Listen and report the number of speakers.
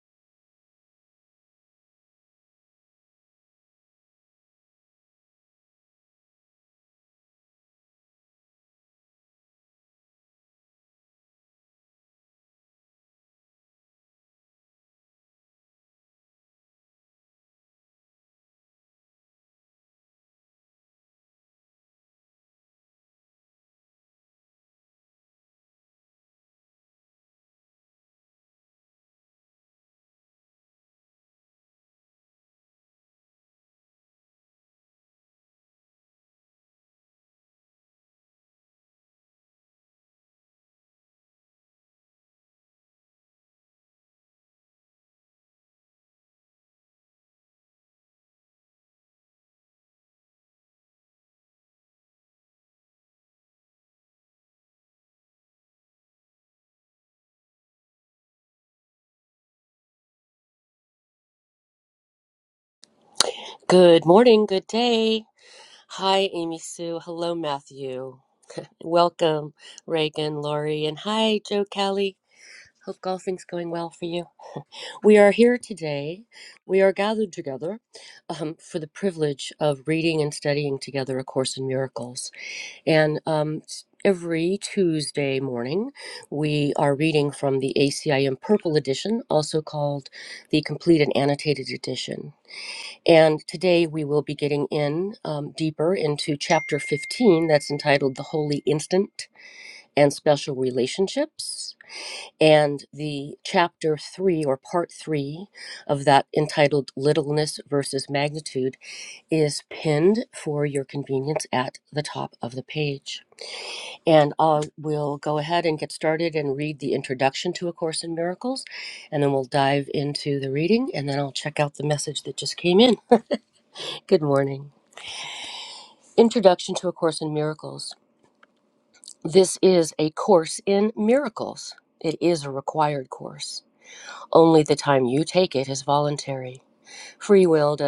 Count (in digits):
1